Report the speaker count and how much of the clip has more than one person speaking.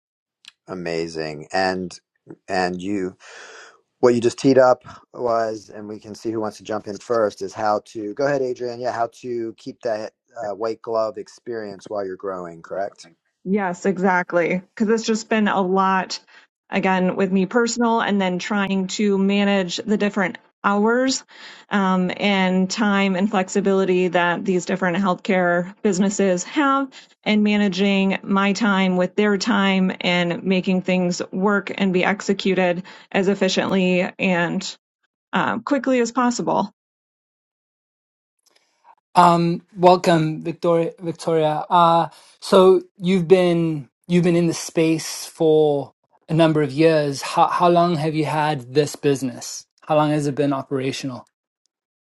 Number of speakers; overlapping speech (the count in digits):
3, no overlap